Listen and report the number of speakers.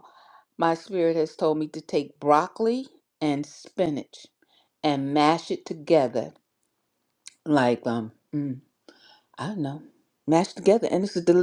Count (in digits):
1